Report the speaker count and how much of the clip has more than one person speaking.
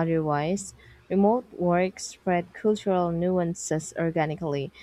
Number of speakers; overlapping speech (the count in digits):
1, no overlap